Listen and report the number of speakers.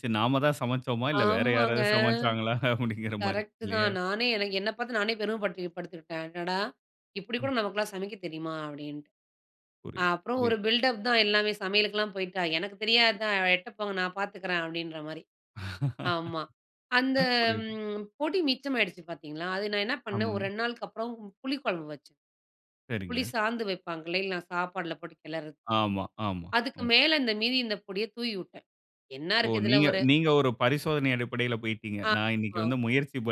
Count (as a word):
two